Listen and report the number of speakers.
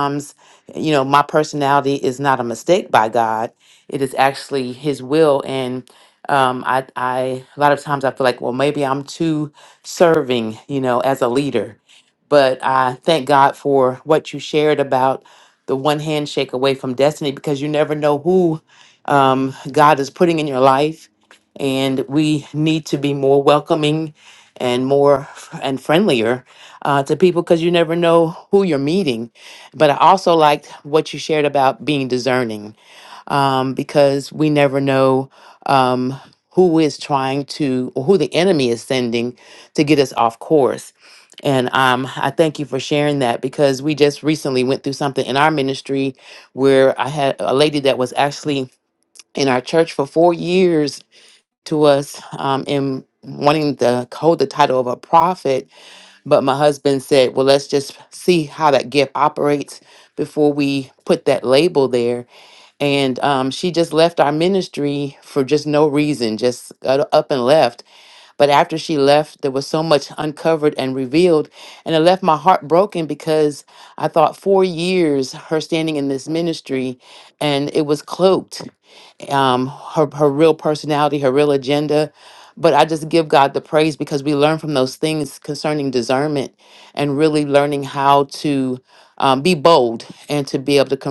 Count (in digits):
1